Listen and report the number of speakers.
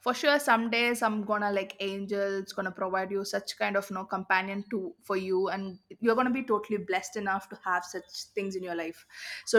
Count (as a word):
one